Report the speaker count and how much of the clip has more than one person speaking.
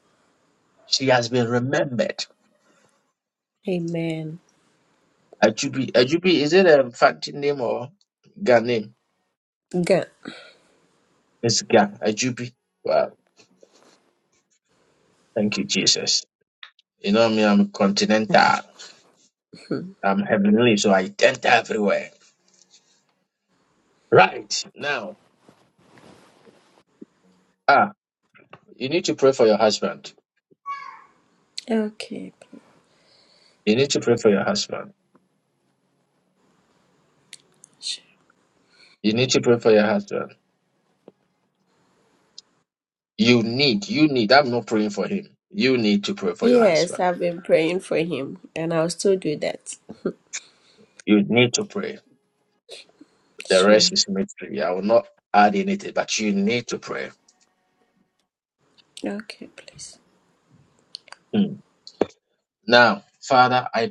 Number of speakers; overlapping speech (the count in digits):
2, about 2%